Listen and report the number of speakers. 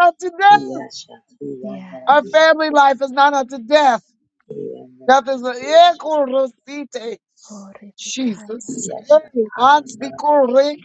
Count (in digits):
3